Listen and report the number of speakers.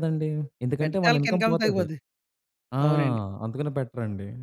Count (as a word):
two